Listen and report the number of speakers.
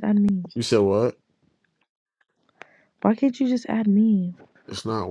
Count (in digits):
2